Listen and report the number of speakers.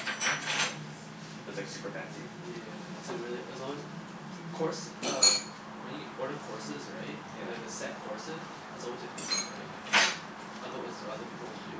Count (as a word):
two